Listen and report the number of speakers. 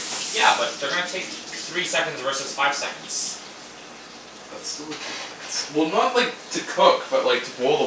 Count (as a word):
two